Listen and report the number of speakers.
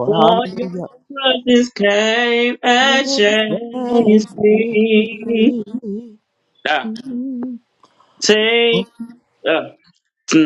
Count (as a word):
two